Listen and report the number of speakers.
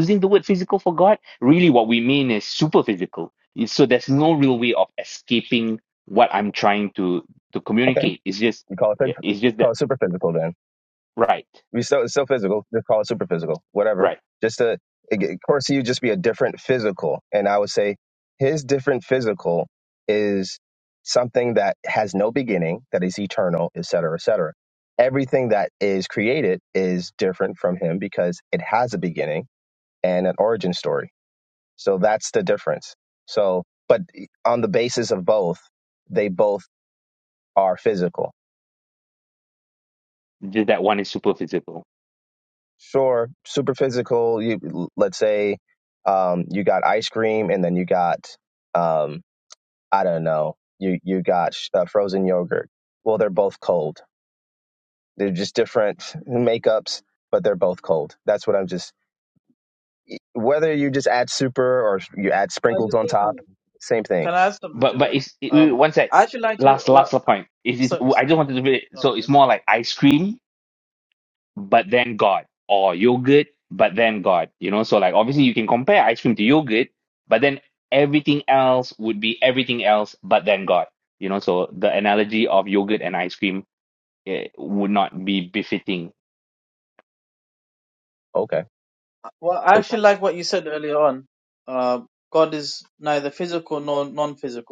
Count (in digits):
3